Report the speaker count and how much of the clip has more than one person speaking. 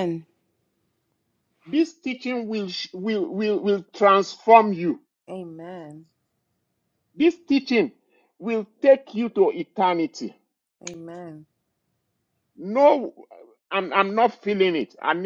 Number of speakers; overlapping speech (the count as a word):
two, no overlap